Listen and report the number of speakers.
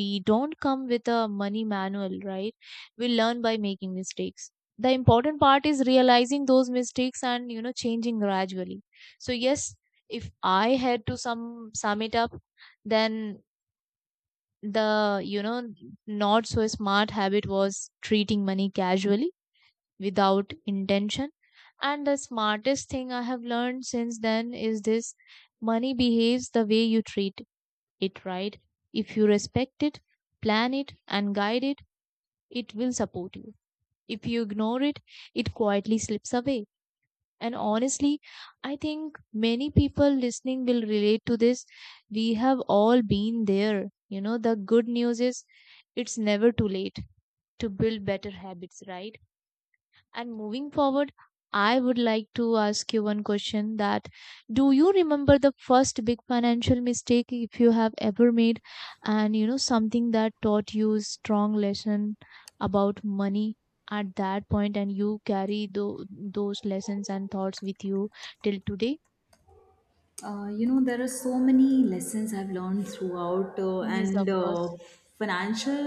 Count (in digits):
2